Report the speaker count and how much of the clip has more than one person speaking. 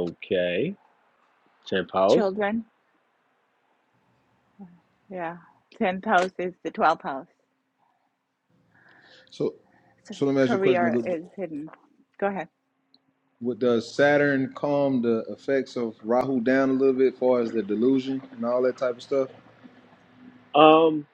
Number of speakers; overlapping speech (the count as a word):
three, about 5%